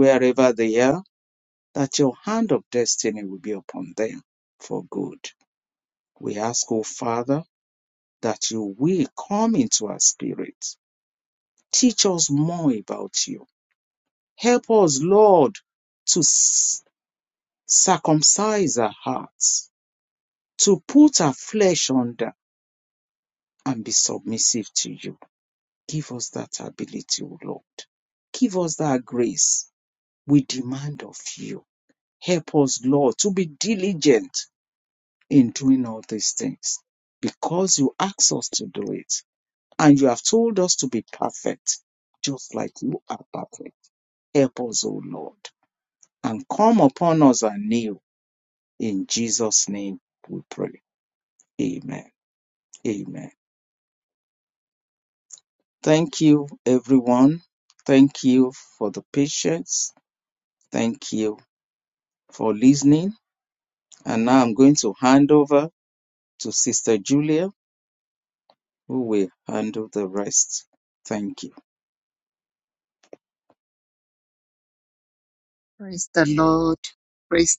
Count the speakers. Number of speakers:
2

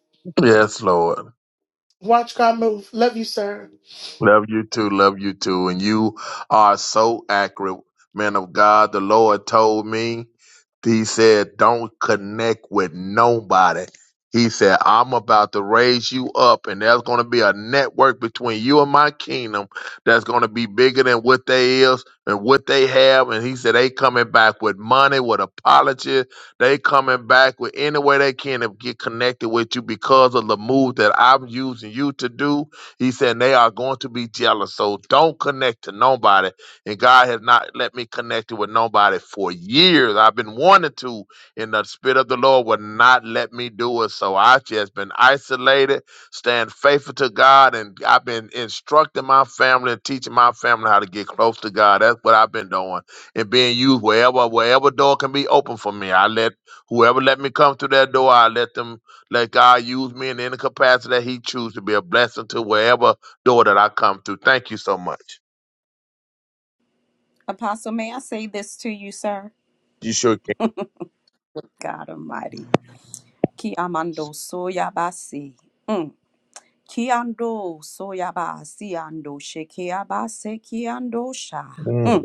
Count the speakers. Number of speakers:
3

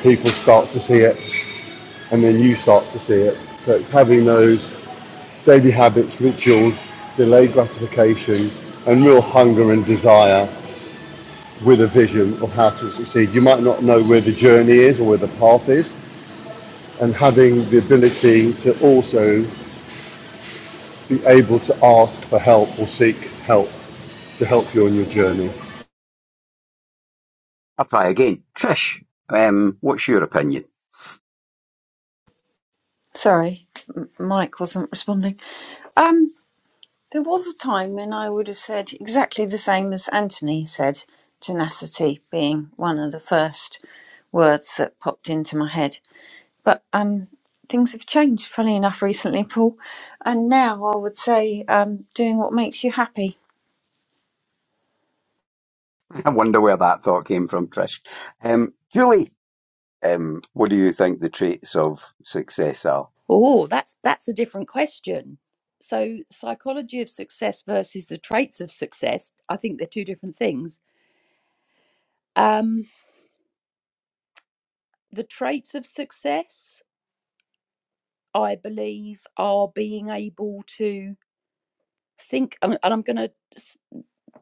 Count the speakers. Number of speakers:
4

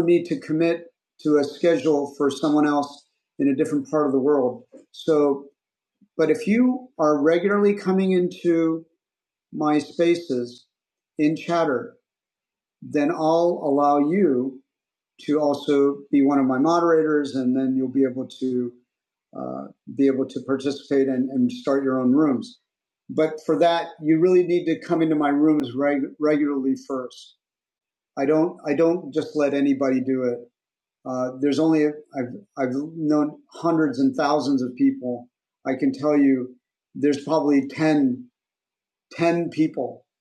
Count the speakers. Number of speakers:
1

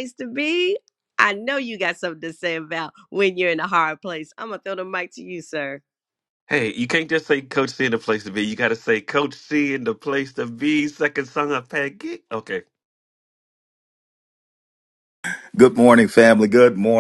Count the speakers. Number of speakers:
3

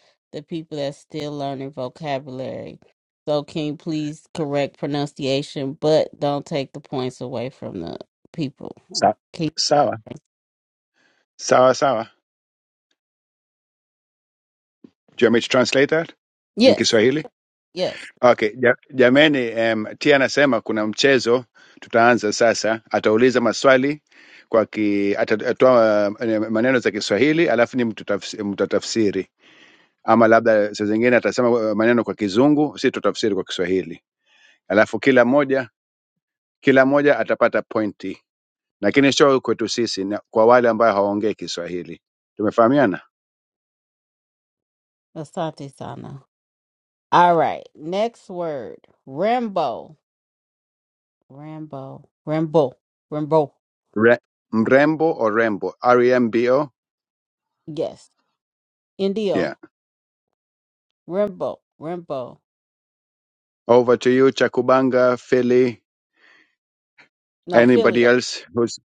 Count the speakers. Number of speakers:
2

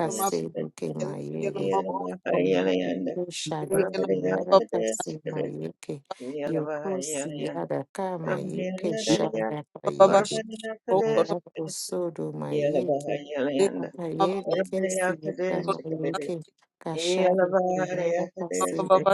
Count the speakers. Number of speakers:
2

